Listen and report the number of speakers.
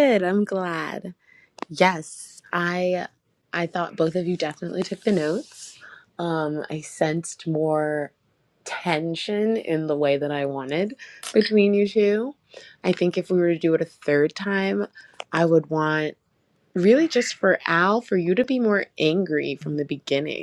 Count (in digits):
1